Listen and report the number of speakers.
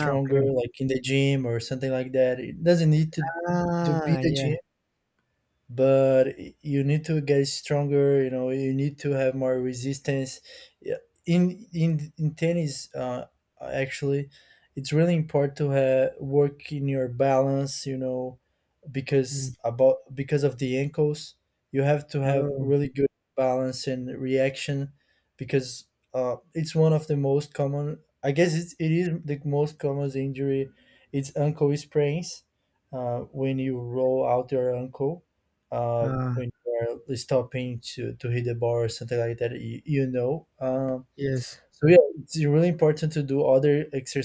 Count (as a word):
two